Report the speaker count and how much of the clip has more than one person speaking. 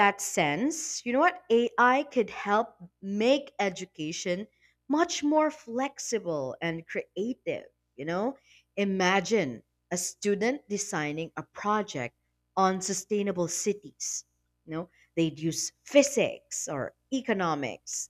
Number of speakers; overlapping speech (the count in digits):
1, no overlap